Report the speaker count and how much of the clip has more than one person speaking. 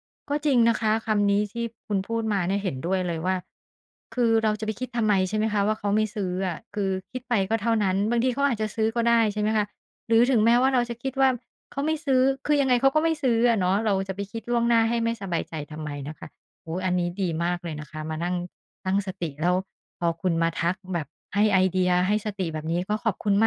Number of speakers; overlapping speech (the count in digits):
1, no overlap